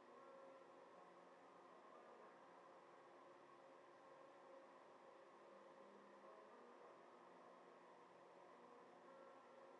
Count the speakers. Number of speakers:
0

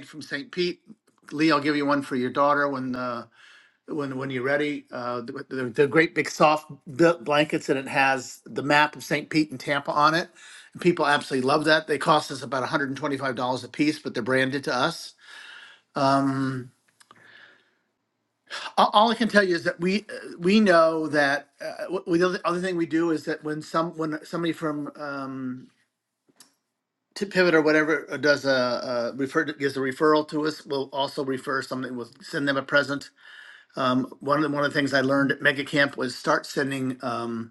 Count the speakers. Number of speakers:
1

